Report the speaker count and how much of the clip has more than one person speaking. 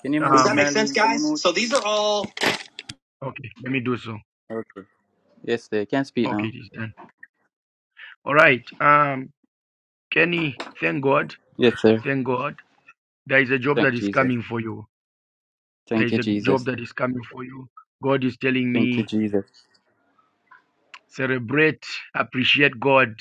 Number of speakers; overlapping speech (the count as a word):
three, about 13%